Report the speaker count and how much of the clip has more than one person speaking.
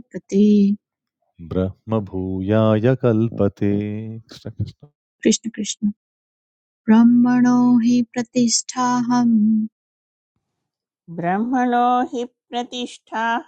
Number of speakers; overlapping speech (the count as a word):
three, no overlap